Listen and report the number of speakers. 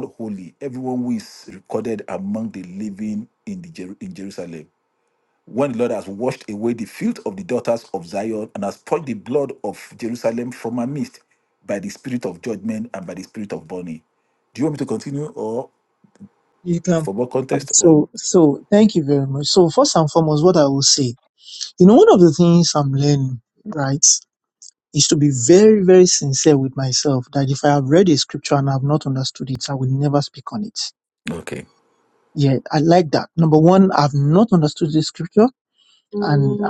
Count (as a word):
two